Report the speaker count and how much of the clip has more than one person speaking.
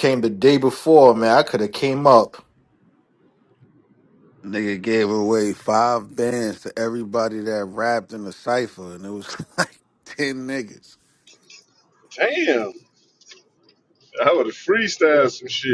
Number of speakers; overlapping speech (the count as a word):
three, no overlap